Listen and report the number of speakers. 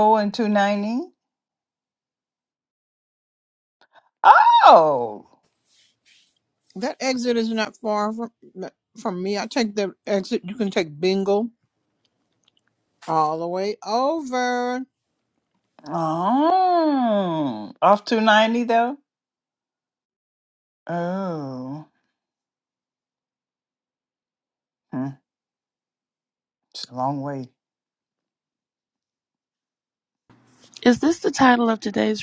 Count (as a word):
three